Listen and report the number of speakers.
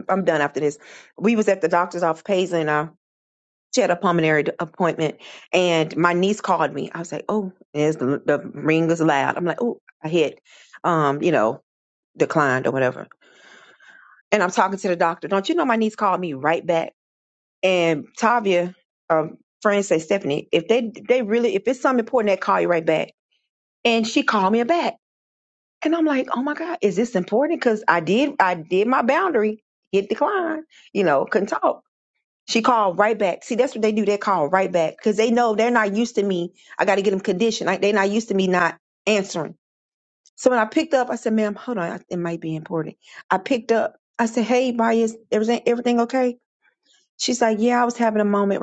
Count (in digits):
1